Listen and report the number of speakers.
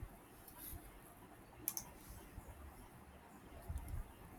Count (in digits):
0